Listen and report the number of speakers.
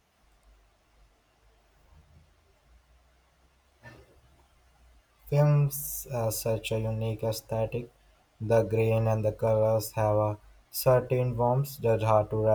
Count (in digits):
1